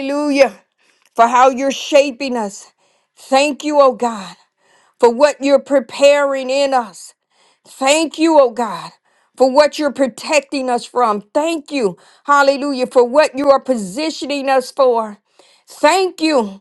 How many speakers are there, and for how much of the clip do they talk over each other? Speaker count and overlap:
1, no overlap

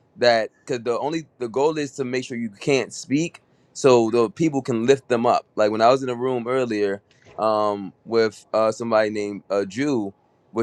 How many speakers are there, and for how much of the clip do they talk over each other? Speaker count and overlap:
1, no overlap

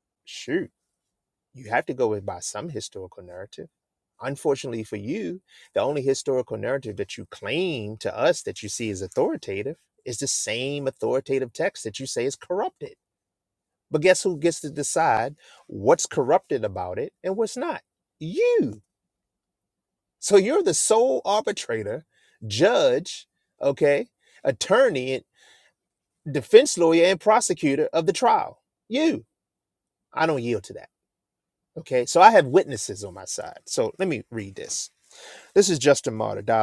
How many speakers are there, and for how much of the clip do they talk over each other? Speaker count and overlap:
1, no overlap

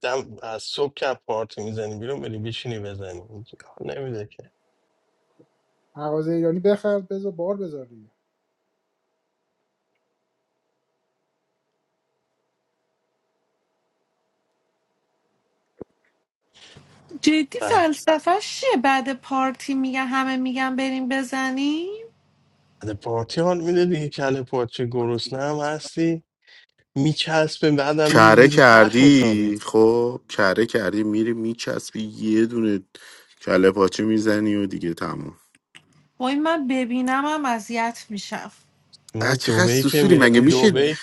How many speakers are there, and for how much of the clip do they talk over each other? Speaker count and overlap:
4, about 8%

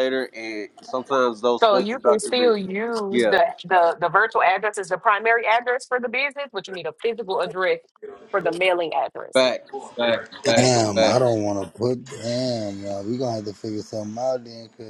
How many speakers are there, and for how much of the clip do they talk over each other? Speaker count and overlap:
3, about 13%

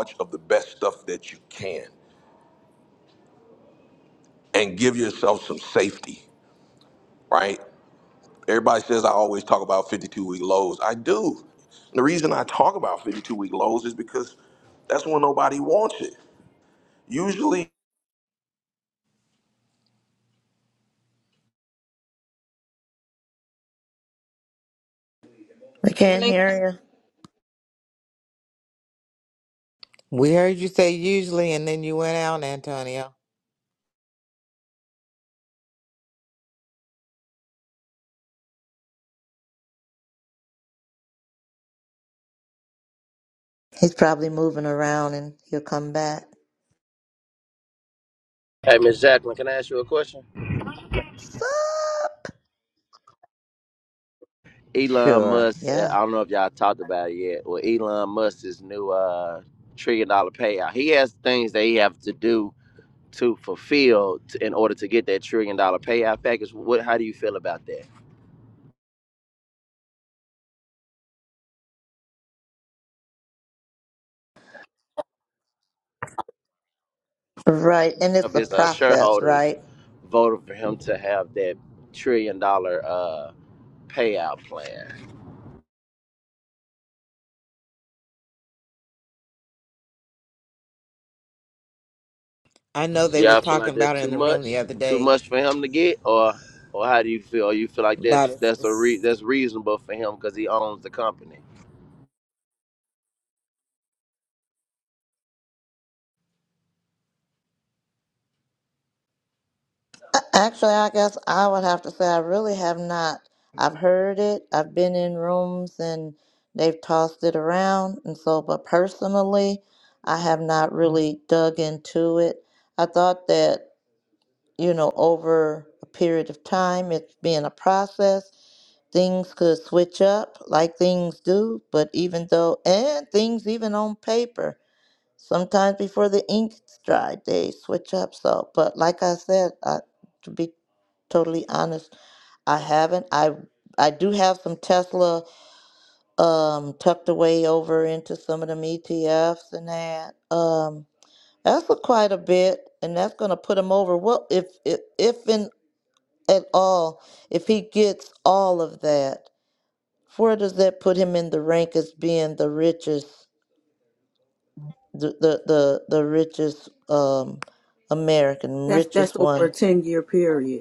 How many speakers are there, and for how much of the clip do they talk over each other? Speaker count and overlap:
5, about 3%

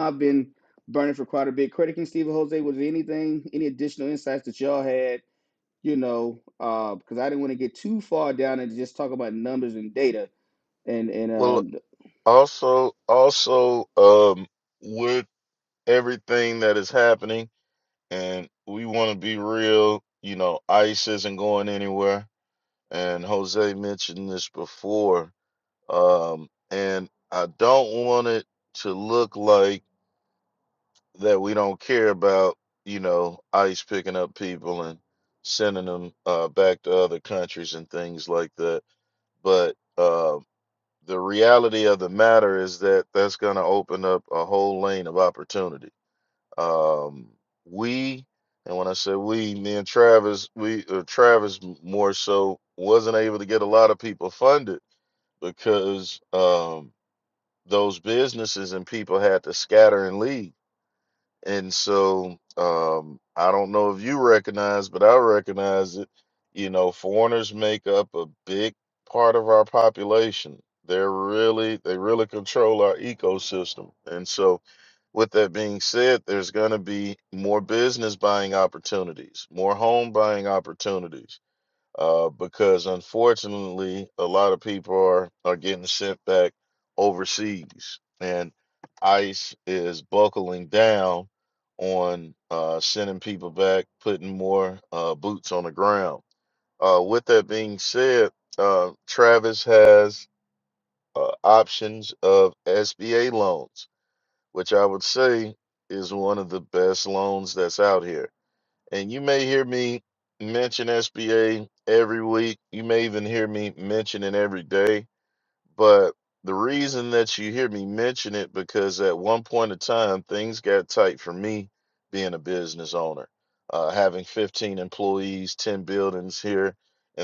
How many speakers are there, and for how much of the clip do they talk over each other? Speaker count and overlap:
2, under 1%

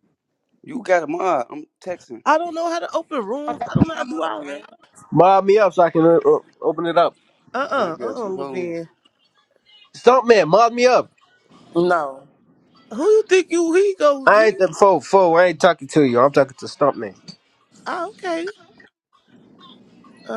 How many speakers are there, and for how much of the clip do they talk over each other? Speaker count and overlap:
4, about 10%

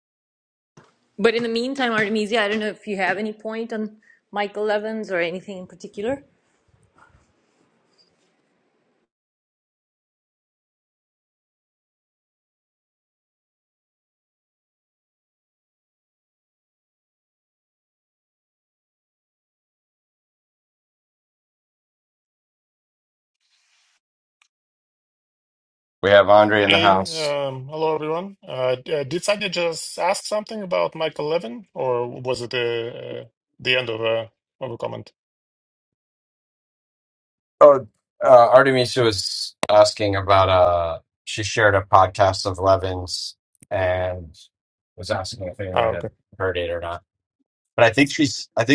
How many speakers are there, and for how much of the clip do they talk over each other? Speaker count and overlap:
3, about 2%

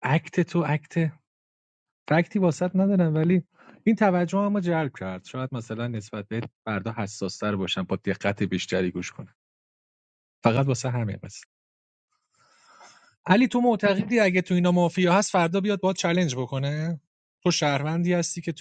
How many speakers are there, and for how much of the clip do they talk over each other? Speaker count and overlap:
1, no overlap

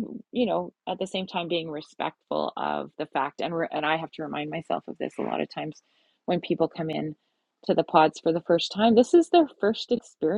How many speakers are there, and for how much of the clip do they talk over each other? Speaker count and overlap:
1, no overlap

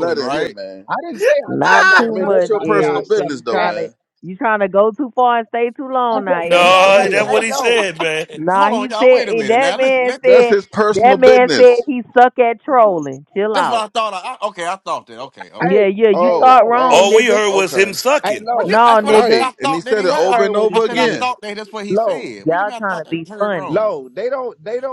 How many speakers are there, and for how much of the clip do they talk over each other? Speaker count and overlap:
5, about 58%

